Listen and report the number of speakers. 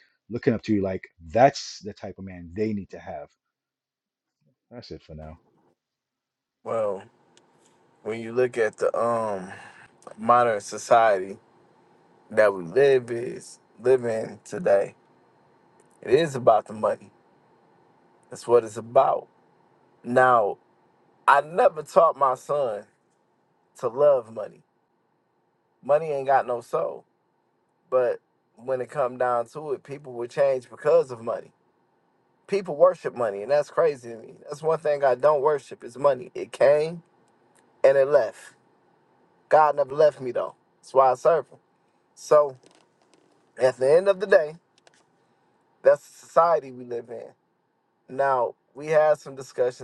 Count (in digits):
2